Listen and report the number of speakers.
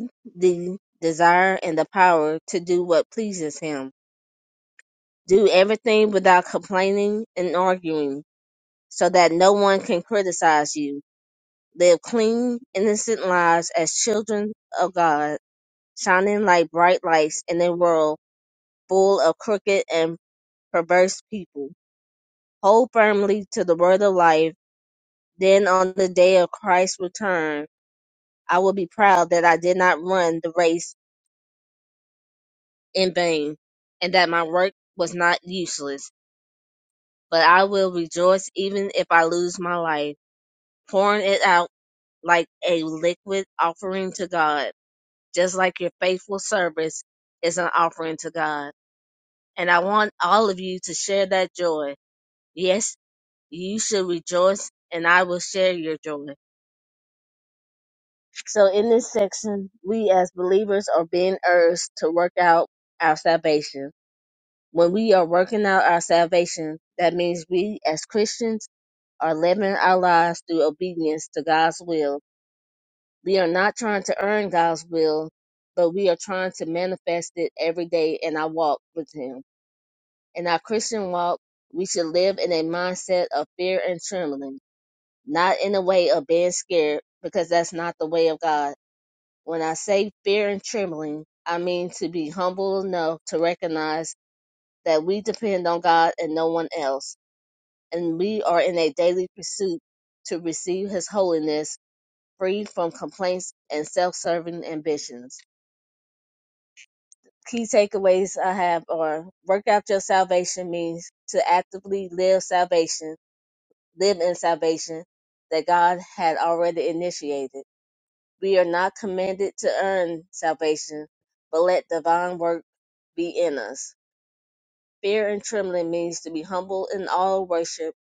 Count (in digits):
1